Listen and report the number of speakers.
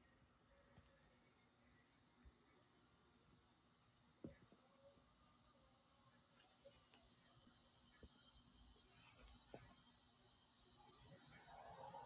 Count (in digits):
0